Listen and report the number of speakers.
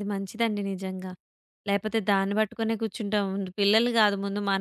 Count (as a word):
one